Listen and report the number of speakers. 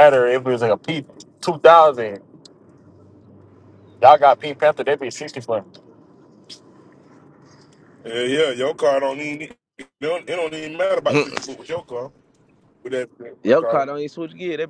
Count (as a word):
three